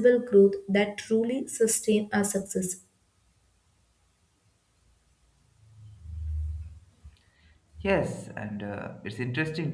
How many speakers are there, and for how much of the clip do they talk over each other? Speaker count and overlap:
2, no overlap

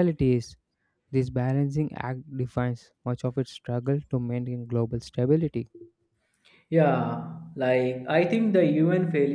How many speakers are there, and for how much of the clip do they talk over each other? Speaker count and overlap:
2, no overlap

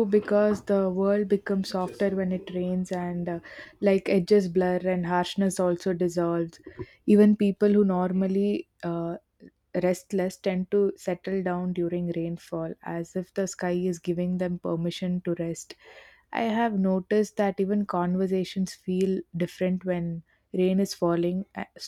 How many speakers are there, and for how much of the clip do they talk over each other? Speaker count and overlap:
1, no overlap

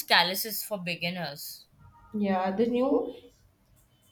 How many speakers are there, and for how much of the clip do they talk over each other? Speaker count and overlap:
2, no overlap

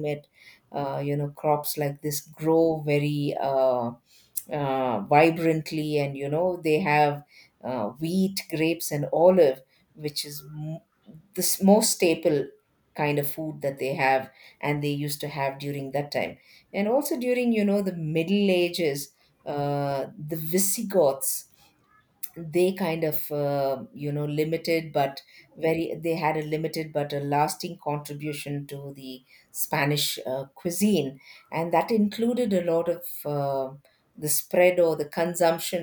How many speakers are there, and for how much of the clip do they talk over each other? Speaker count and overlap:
1, no overlap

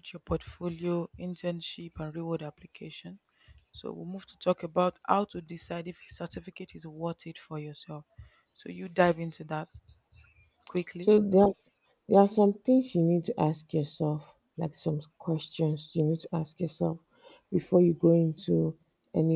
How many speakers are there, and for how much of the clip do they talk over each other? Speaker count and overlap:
2, under 1%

